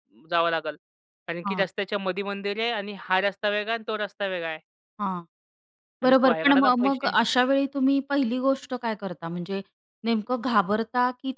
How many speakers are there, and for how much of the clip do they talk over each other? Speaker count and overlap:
two, about 12%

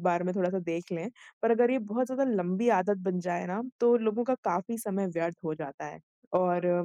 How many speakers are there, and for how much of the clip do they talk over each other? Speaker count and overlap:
one, no overlap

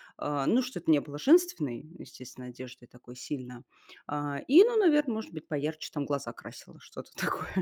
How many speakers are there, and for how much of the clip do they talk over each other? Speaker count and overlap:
one, no overlap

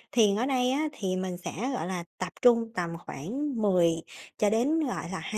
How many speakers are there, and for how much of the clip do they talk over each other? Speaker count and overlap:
one, no overlap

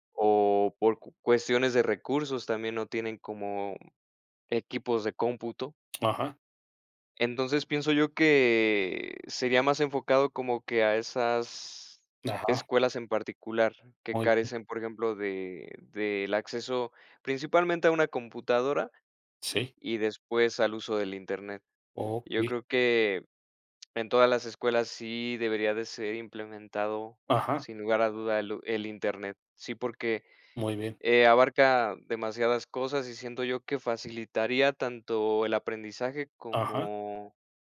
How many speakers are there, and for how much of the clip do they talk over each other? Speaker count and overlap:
two, about 3%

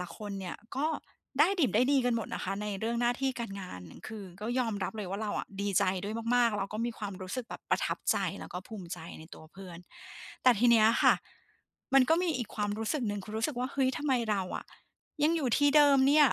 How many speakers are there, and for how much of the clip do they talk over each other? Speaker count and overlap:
one, no overlap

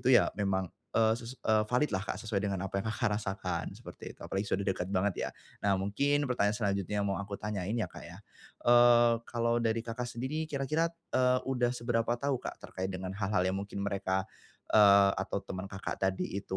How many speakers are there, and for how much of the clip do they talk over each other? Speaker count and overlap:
one, no overlap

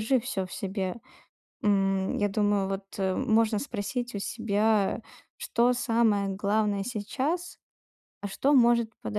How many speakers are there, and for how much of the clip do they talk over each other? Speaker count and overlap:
one, no overlap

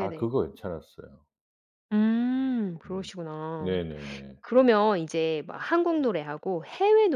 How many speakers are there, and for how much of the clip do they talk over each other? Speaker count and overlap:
two, about 6%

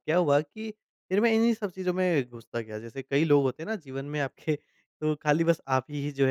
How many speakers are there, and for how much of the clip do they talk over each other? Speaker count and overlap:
one, no overlap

